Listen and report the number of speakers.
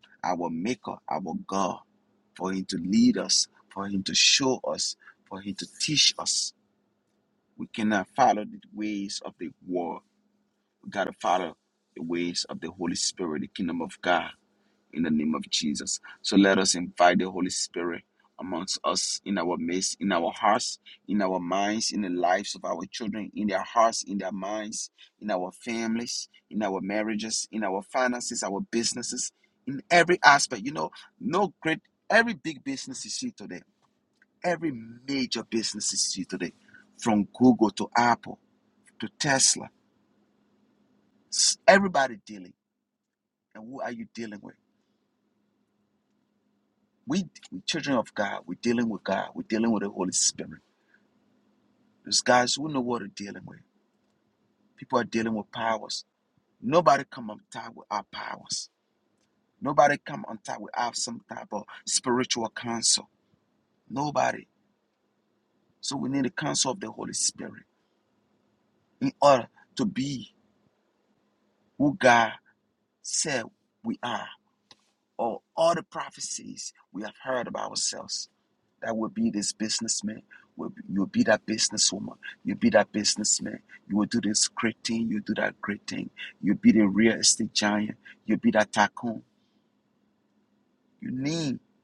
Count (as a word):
one